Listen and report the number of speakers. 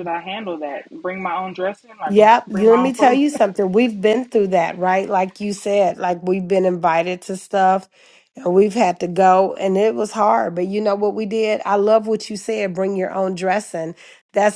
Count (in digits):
2